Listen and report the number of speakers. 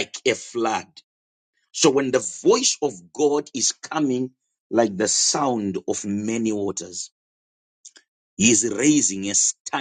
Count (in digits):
1